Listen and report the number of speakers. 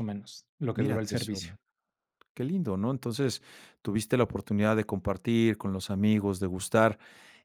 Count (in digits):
2